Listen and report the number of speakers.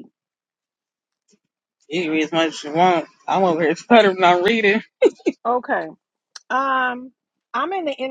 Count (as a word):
two